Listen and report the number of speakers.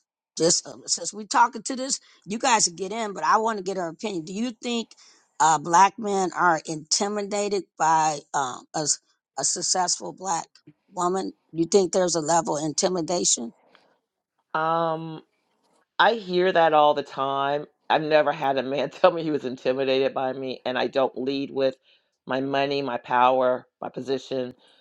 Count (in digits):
2